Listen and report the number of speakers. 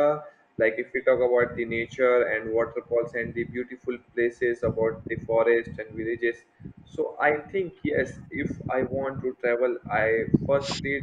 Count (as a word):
one